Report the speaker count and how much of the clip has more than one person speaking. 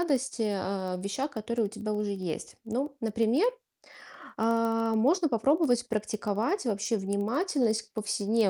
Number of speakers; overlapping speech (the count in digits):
1, no overlap